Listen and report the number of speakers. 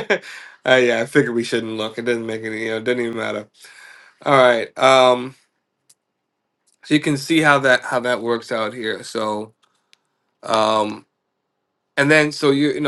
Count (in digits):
1